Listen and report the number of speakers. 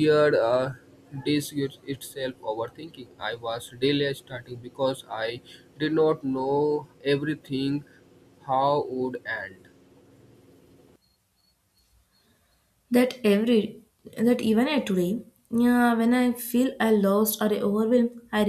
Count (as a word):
two